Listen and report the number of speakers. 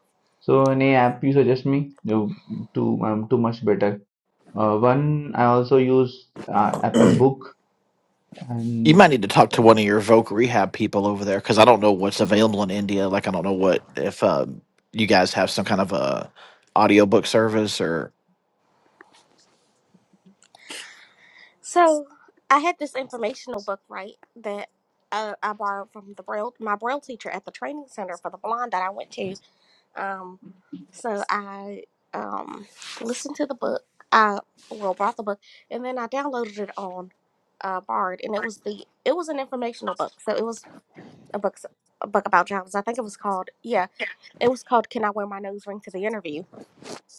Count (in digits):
3